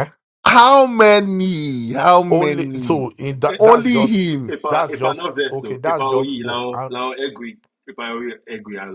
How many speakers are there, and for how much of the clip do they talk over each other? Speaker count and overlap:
3, about 32%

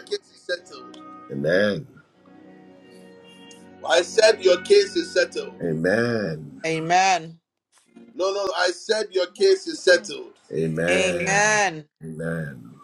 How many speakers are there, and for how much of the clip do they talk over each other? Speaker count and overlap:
3, about 6%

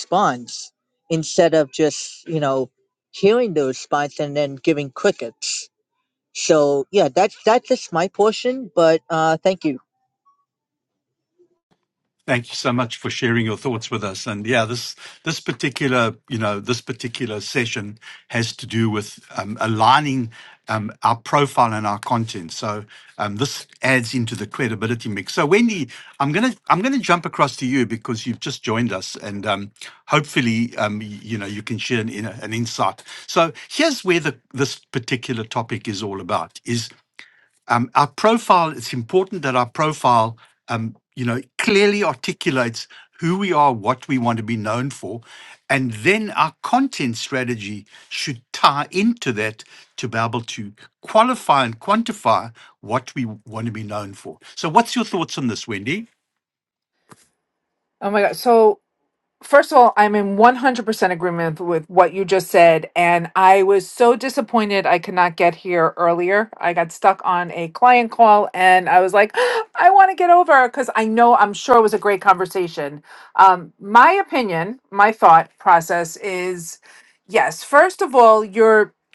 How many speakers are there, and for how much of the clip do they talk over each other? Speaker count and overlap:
3, no overlap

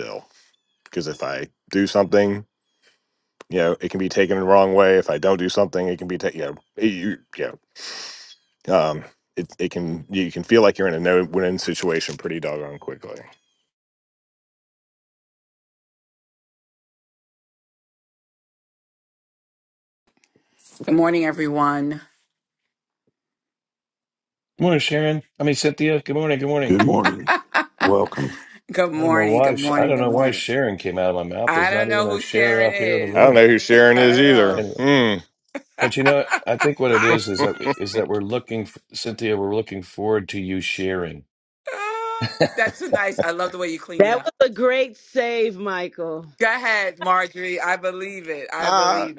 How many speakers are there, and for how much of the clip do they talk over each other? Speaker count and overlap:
5, about 11%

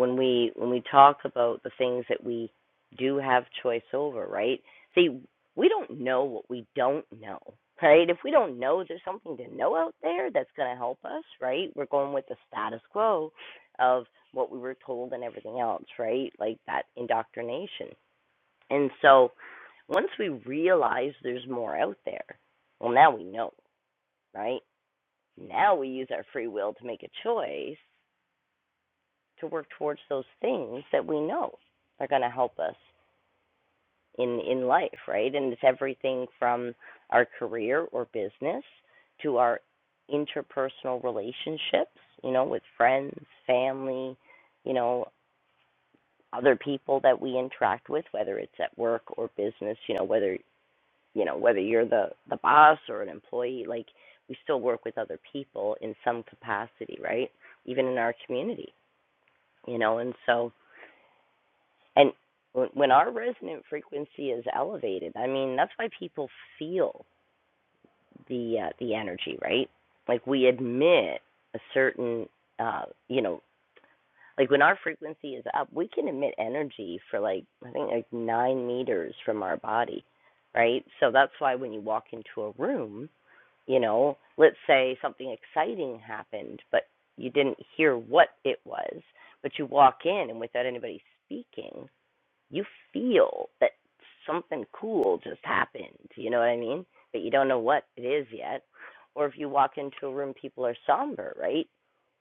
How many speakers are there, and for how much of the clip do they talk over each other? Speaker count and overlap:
1, no overlap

